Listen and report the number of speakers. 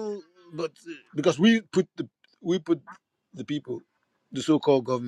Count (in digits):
1